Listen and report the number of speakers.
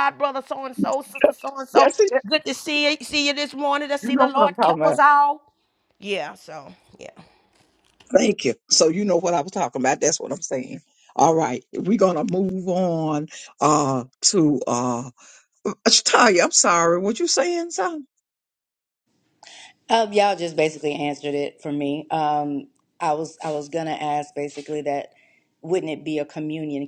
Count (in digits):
3